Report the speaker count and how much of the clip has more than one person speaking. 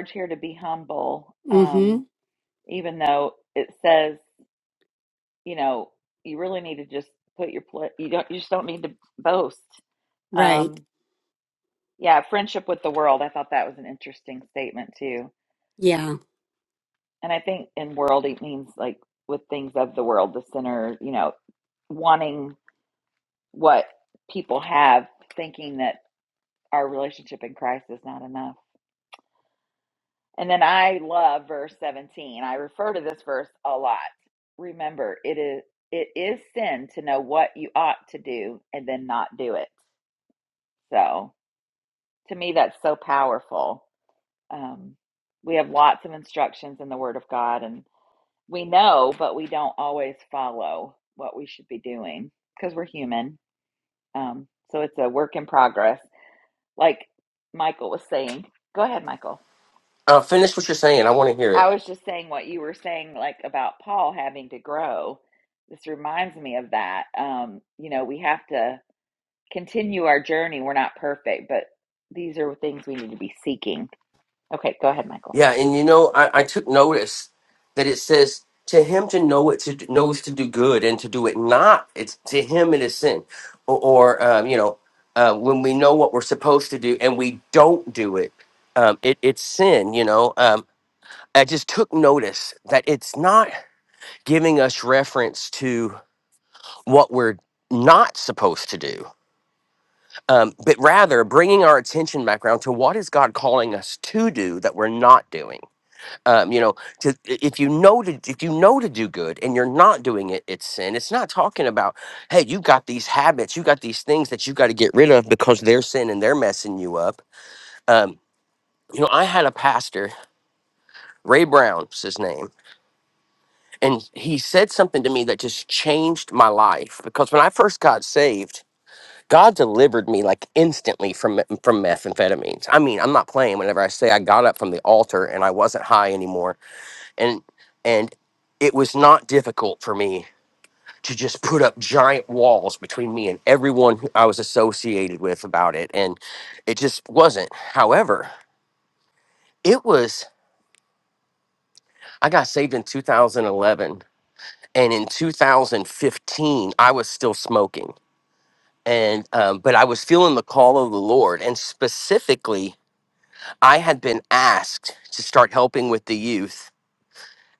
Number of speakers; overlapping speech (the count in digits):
3, about 1%